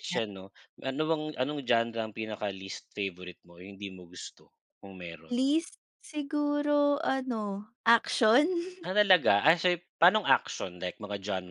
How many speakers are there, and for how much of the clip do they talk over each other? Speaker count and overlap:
2, about 2%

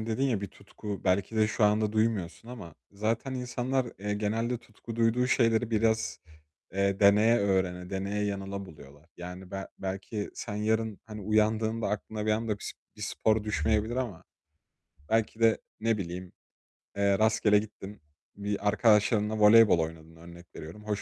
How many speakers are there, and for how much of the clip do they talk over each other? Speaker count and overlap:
1, no overlap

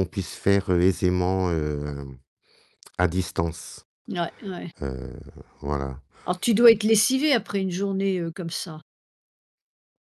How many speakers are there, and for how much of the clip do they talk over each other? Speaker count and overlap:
2, no overlap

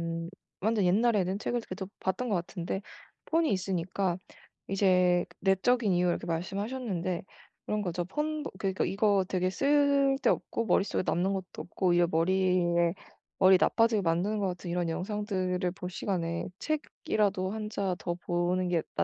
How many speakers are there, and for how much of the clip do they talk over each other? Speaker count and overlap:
1, no overlap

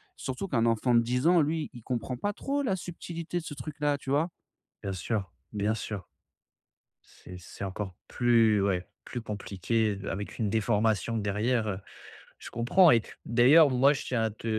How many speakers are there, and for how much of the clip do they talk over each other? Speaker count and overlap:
2, about 1%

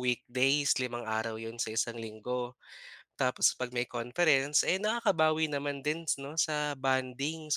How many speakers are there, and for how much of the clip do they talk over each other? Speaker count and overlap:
1, no overlap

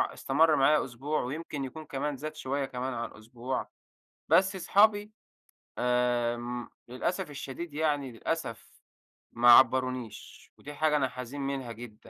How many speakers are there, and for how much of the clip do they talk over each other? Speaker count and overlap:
1, no overlap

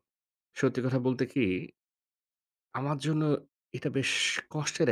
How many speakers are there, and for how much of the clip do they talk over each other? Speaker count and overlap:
1, no overlap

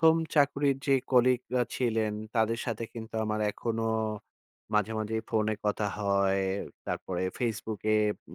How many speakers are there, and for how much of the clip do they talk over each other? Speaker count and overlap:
1, no overlap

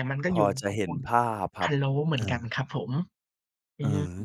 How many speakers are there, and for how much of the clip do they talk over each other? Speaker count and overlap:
2, about 30%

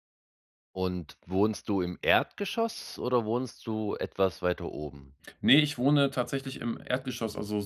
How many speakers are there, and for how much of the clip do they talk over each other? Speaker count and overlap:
2, no overlap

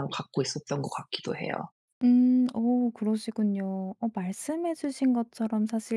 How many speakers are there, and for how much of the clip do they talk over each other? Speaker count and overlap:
2, no overlap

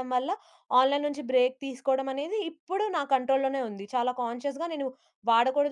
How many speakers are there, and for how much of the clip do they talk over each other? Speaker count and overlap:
1, no overlap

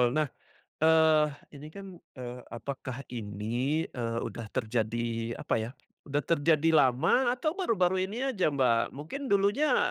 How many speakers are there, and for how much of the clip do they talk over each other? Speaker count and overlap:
1, no overlap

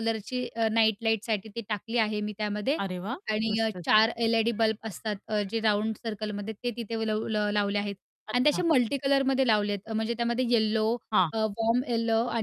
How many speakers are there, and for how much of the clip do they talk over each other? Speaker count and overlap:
2, about 7%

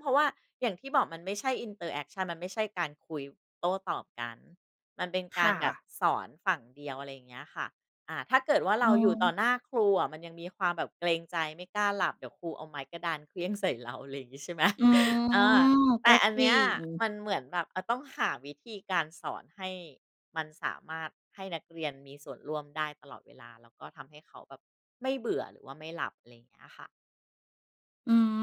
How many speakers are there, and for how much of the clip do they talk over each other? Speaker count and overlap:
2, about 5%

